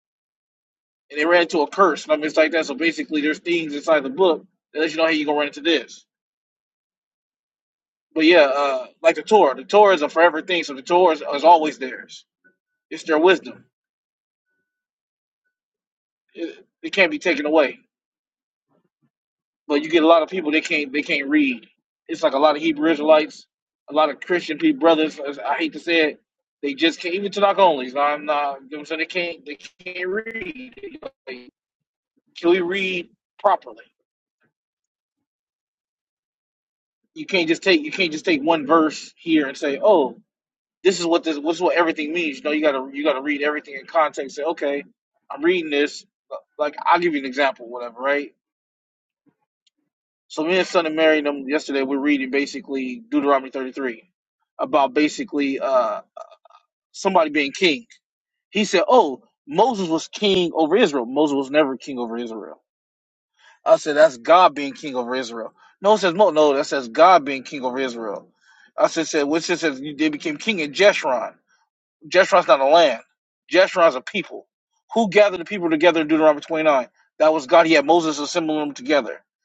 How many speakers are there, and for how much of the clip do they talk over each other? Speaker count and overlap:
1, no overlap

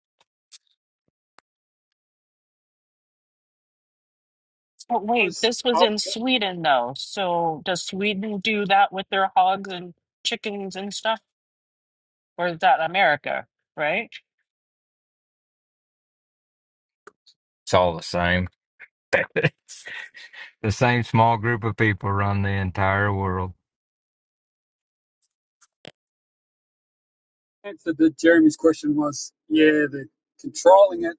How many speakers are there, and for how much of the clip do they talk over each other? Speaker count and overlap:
3, about 1%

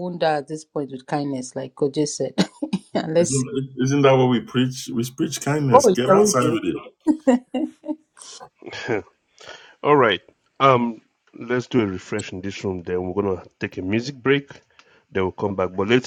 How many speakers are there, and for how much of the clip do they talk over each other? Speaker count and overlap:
3, about 7%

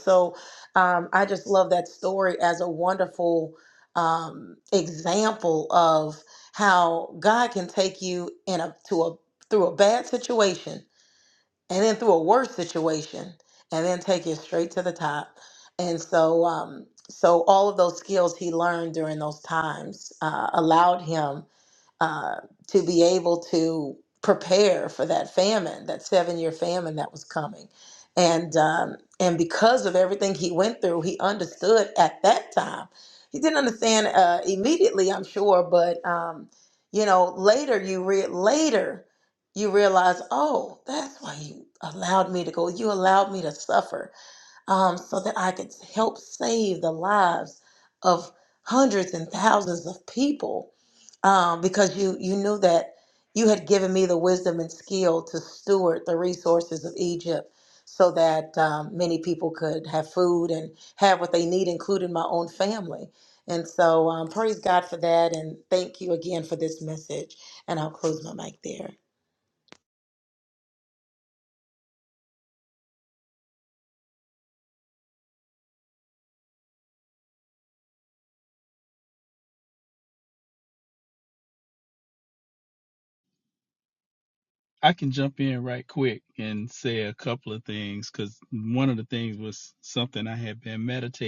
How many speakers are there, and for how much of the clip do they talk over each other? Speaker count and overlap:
2, no overlap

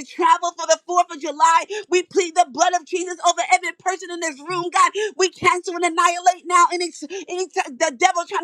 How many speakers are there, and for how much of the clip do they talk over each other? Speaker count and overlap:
1, no overlap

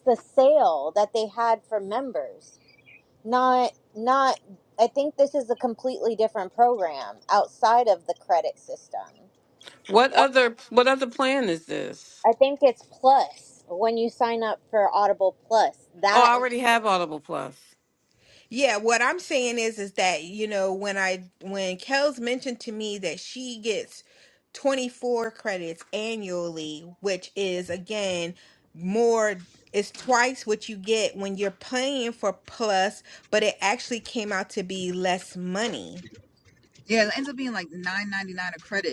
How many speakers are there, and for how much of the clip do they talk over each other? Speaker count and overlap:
4, about 1%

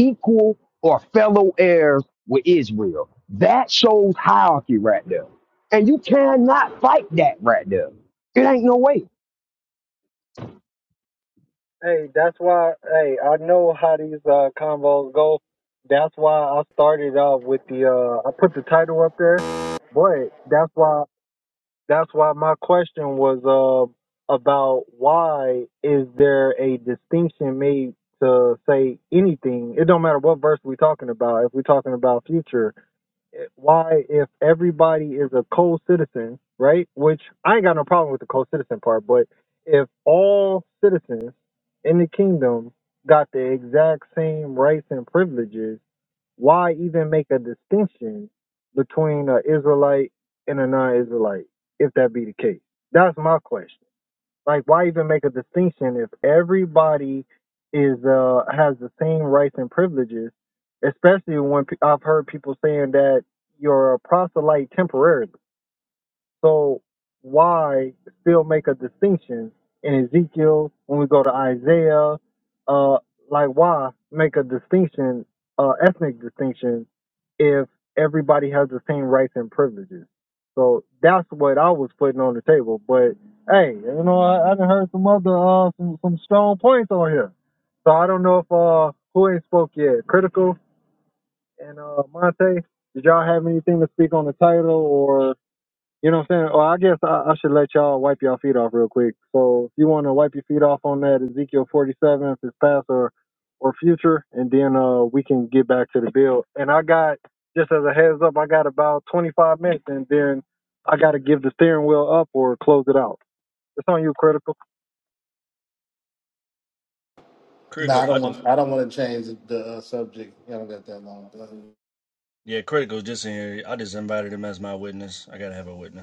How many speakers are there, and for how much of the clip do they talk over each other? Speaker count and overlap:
4, under 1%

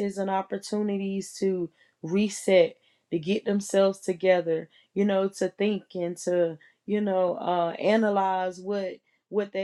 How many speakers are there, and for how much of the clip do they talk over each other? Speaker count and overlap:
1, no overlap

